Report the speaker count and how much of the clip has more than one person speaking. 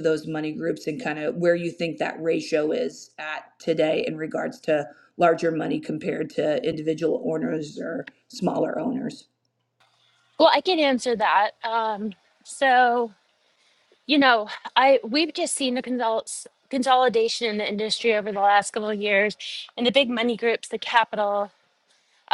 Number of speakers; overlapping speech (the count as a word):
two, no overlap